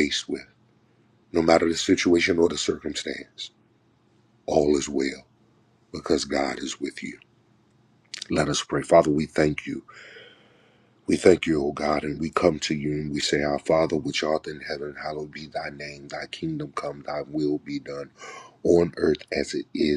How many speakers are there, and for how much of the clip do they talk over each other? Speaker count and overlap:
one, no overlap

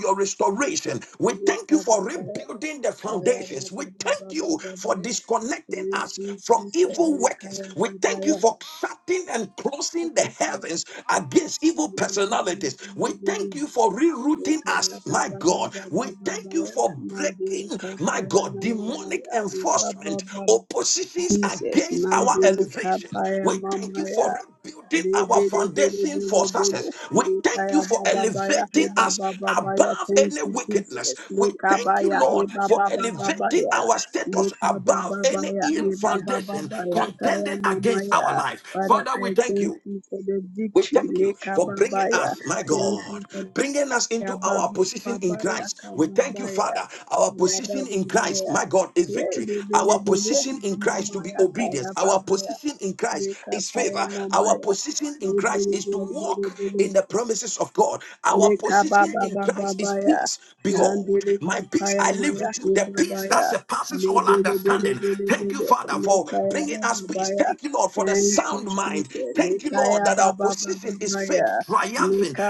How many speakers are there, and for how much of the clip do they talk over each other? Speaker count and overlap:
two, about 69%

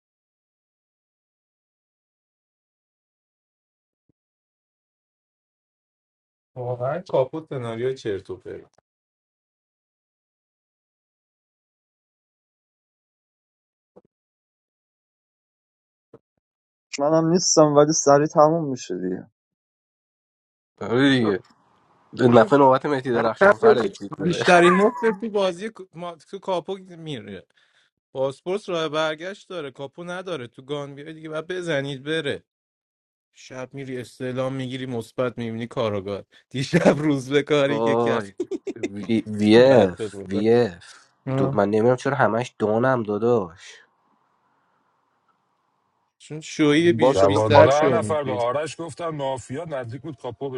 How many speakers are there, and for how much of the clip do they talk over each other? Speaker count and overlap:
four, about 7%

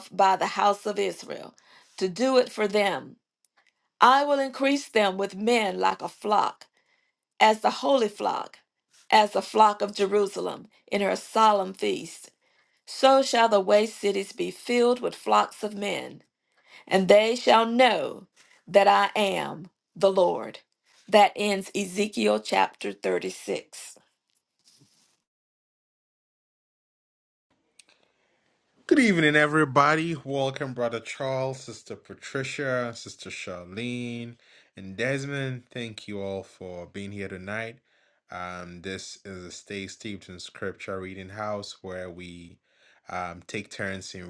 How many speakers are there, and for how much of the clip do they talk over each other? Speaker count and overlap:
two, no overlap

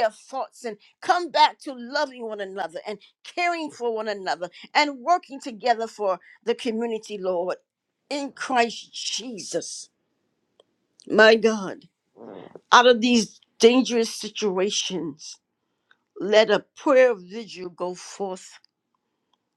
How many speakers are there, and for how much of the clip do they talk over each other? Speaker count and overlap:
one, no overlap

